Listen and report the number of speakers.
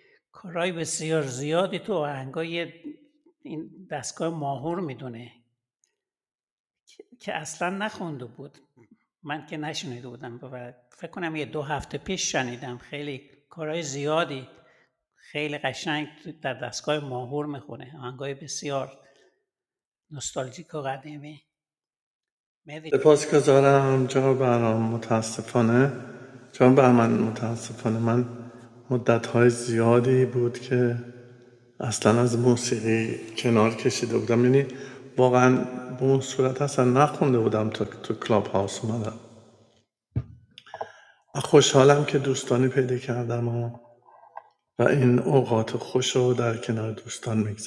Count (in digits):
2